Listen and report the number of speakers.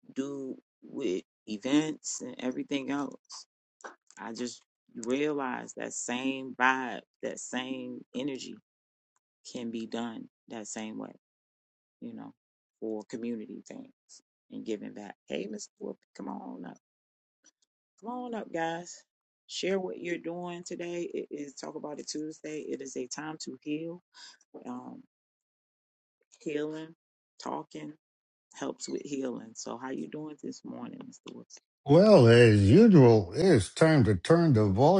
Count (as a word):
two